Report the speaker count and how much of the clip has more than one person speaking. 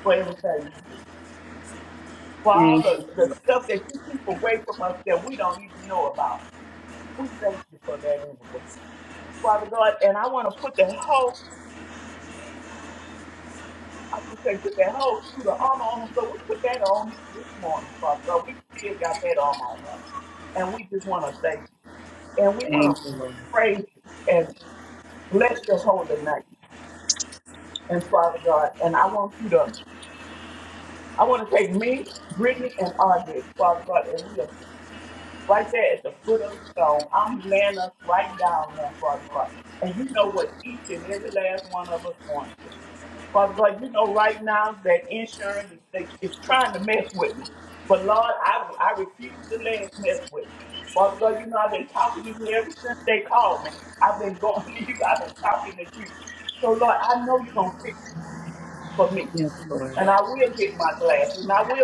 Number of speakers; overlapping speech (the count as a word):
two, about 2%